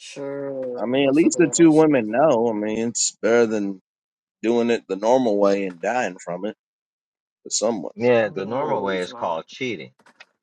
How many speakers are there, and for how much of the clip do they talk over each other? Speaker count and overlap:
three, about 22%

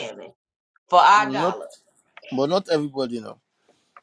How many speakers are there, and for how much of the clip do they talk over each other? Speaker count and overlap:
two, about 10%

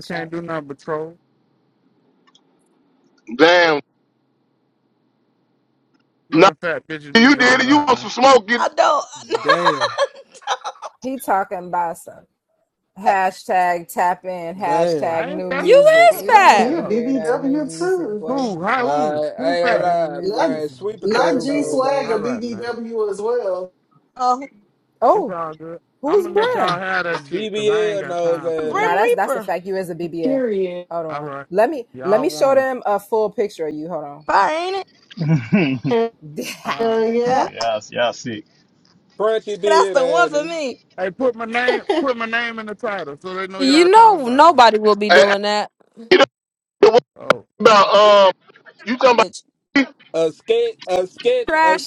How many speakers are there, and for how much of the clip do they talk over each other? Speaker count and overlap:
eight, about 32%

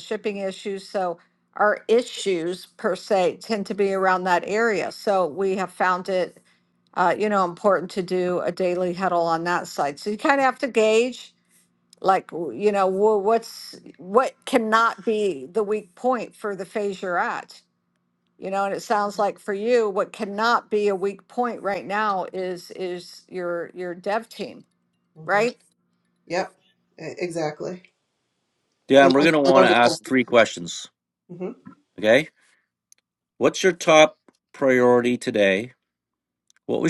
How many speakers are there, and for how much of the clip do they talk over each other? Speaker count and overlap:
three, about 3%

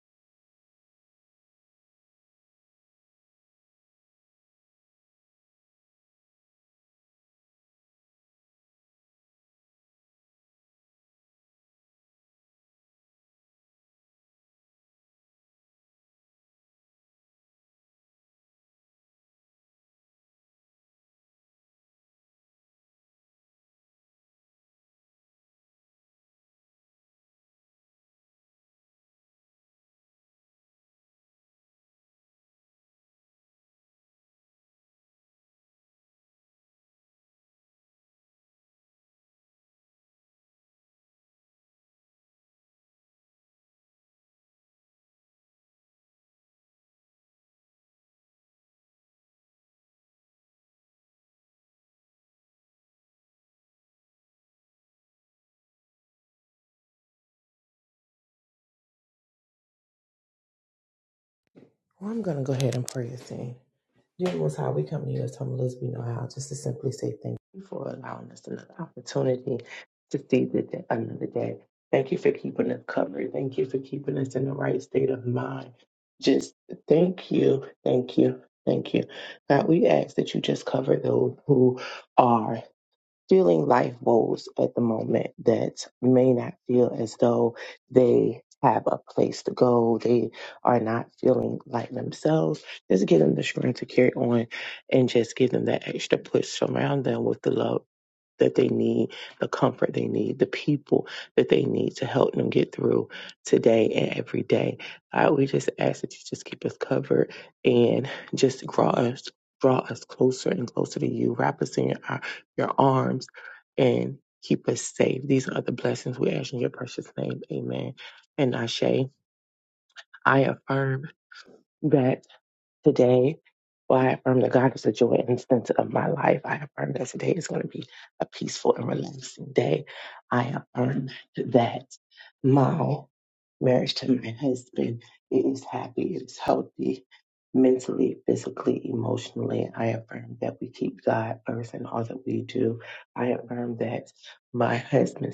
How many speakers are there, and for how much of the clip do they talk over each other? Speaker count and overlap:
one, no overlap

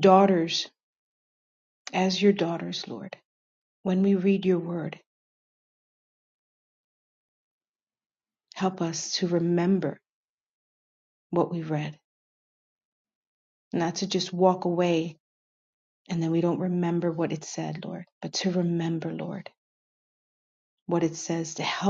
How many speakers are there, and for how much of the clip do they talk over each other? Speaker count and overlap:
one, no overlap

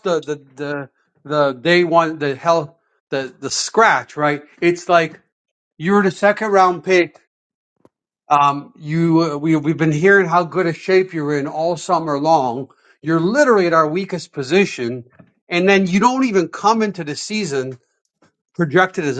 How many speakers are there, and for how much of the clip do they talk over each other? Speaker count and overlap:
one, no overlap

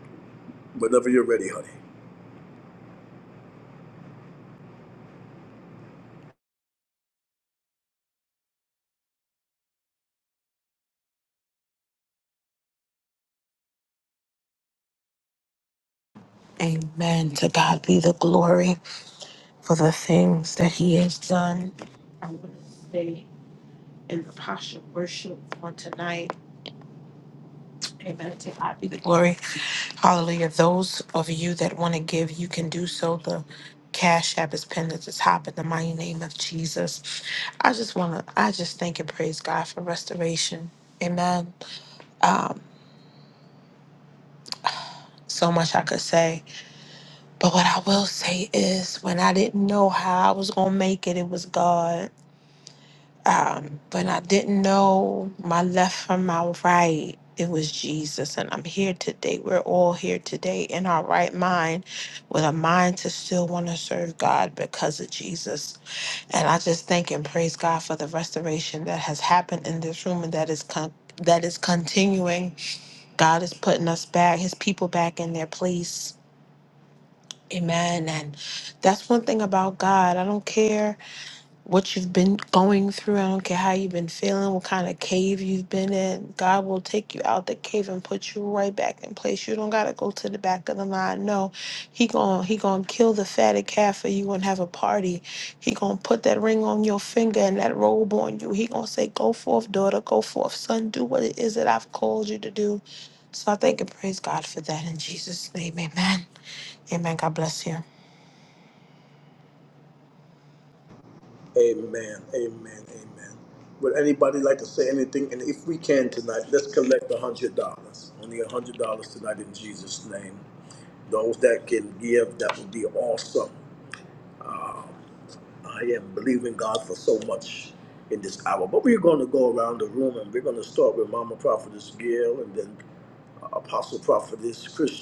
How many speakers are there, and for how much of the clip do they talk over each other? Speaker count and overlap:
two, no overlap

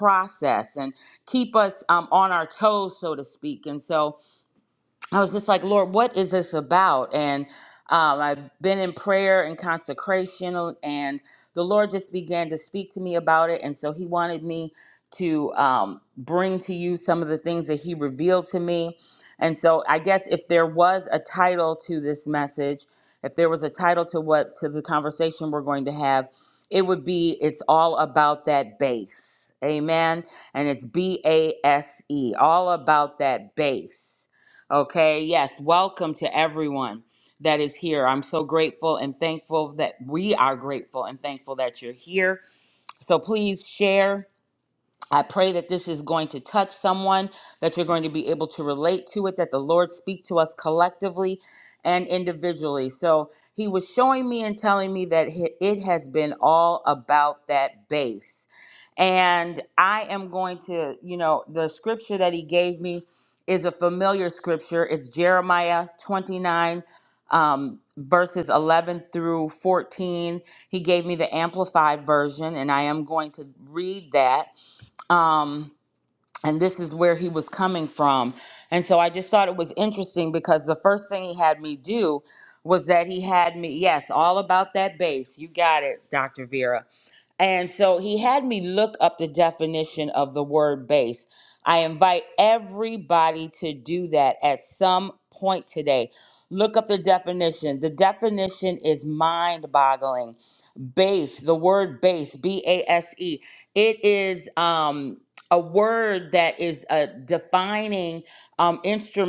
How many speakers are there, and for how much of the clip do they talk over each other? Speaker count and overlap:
one, no overlap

